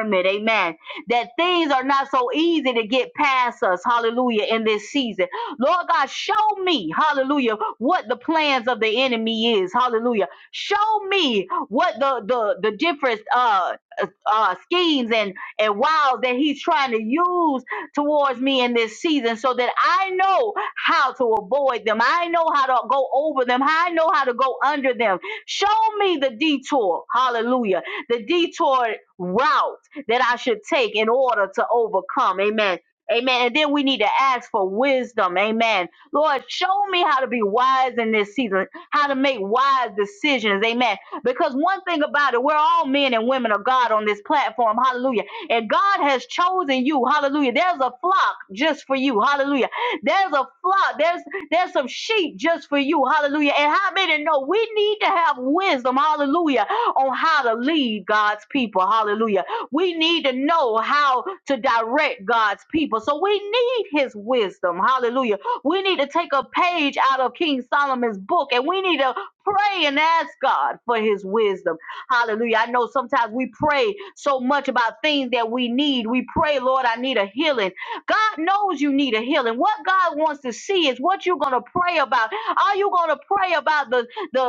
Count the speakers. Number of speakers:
1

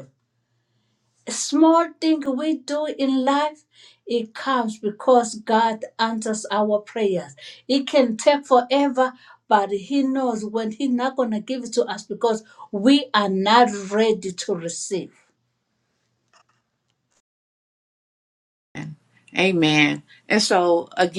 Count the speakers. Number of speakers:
2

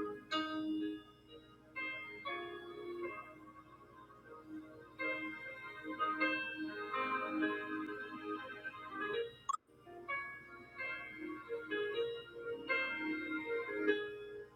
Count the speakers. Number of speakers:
0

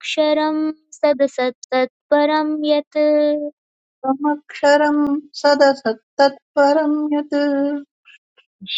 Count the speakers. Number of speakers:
2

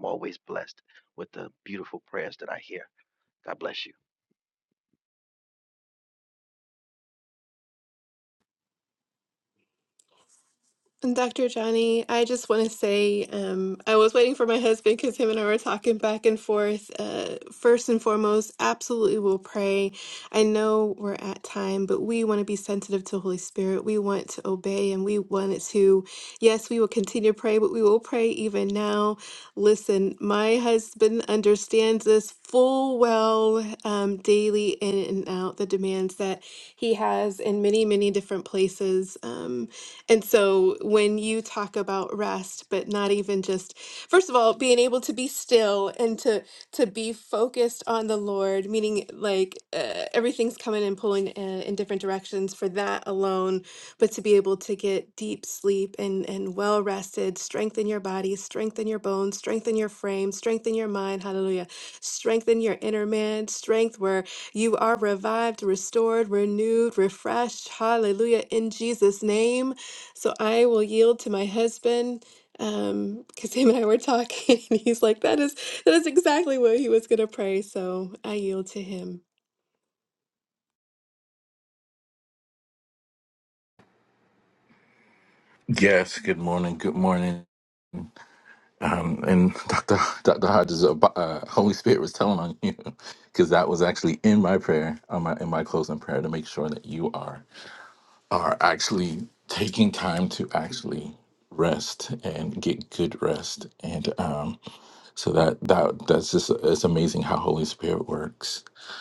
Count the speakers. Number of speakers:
3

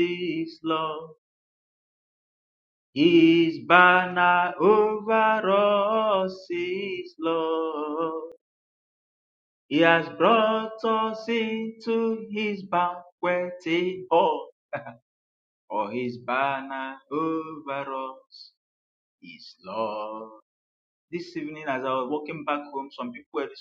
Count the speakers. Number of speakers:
1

